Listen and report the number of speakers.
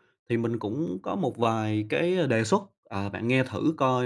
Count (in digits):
1